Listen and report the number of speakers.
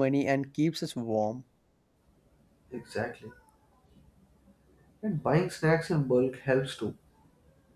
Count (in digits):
2